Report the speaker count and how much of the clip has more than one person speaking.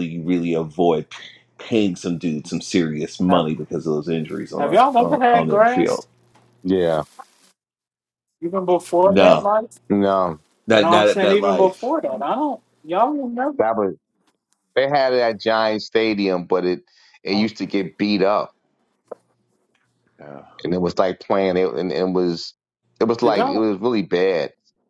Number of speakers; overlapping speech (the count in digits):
3, about 14%